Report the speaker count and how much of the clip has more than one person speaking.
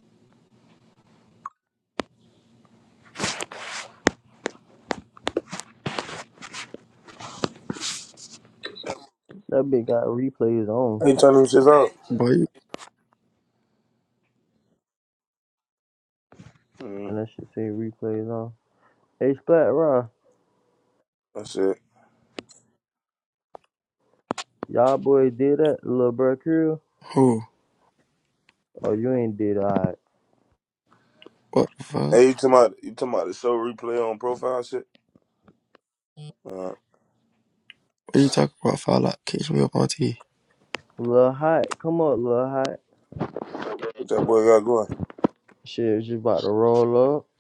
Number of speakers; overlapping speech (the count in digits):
3, under 1%